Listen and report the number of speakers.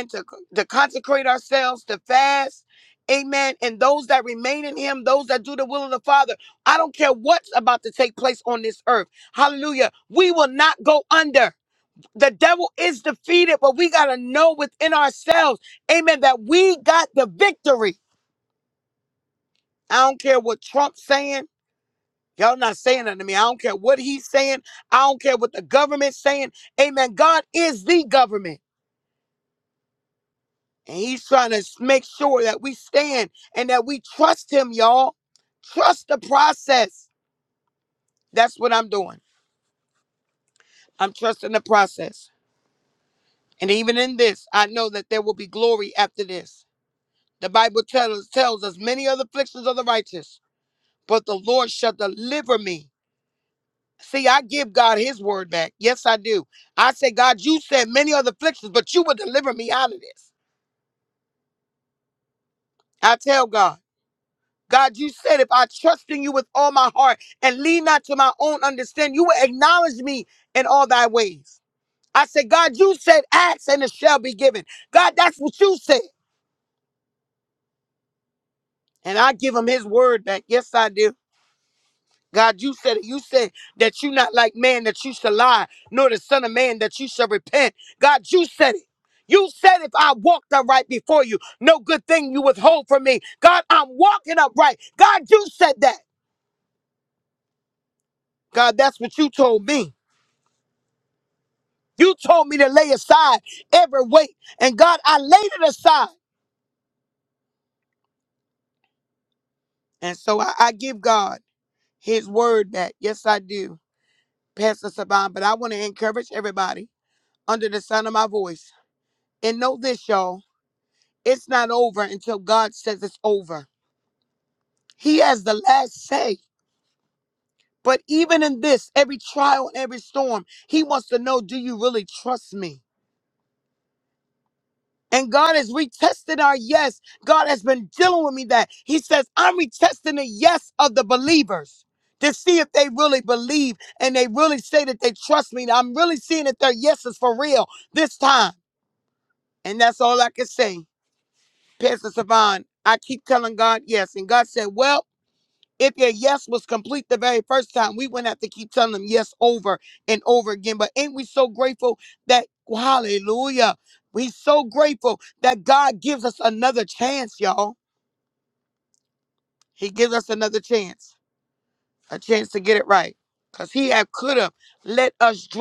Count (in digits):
1